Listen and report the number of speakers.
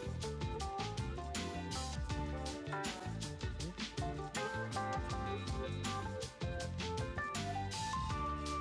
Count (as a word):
zero